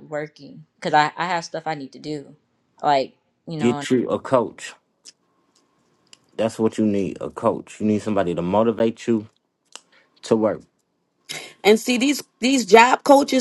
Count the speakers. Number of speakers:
3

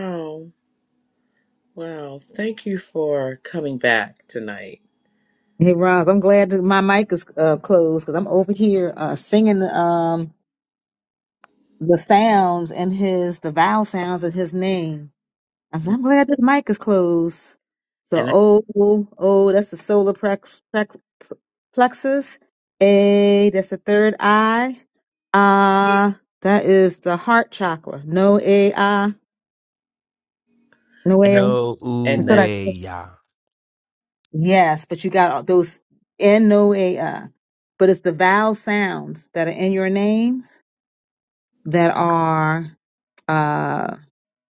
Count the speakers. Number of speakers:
3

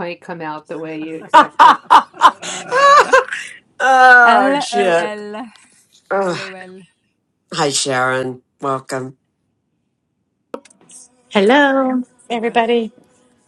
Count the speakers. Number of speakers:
4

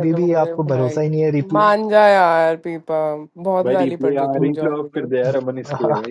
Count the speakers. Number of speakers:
3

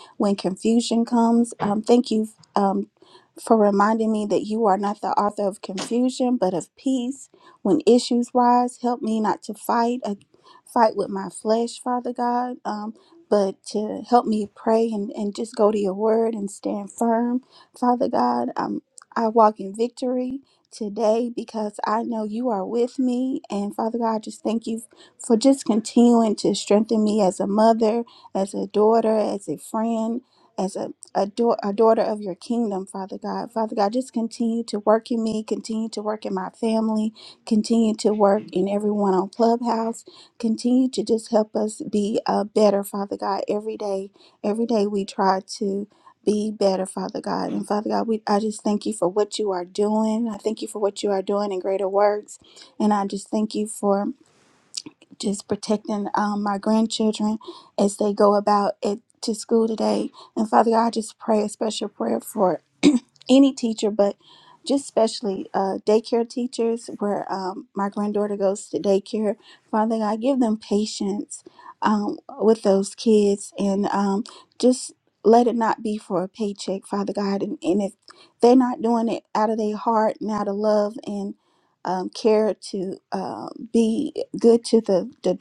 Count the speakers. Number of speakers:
1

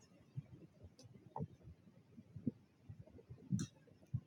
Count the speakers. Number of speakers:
0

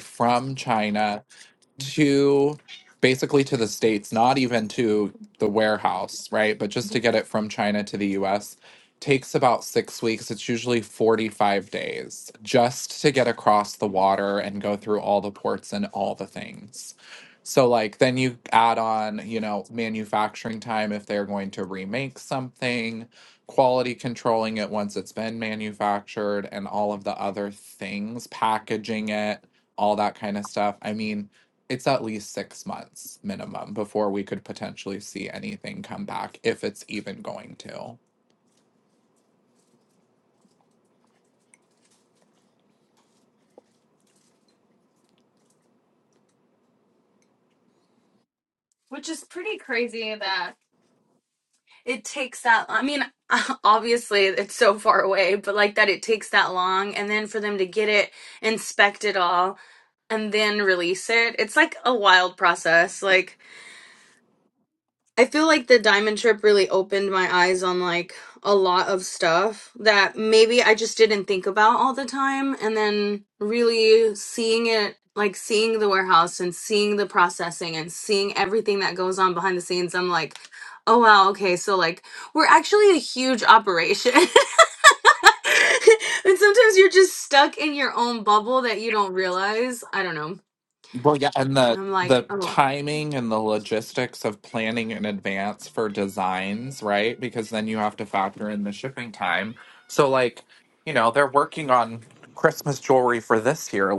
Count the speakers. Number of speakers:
2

